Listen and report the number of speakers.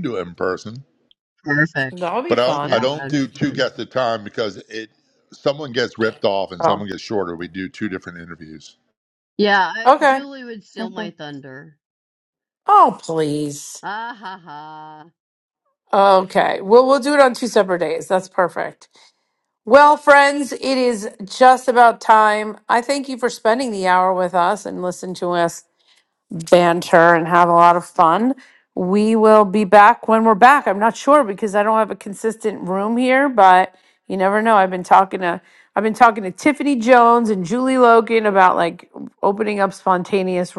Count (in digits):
3